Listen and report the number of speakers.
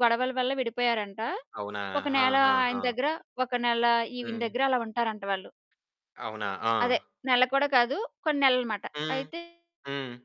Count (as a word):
two